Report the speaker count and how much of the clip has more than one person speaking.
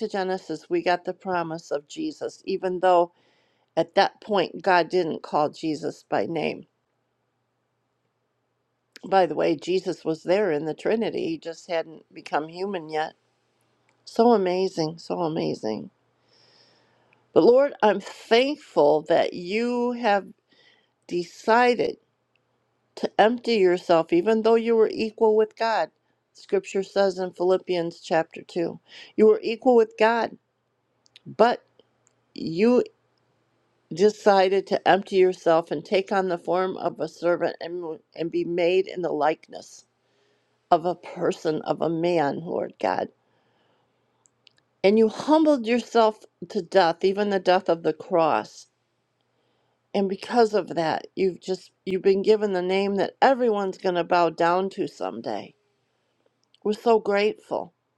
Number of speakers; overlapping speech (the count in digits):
1, no overlap